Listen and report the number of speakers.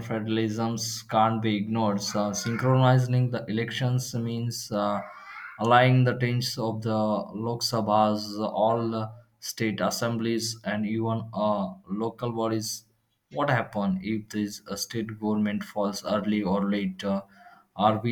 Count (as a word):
one